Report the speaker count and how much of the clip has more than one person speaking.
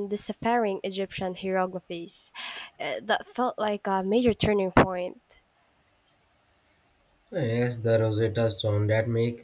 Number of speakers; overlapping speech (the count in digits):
2, no overlap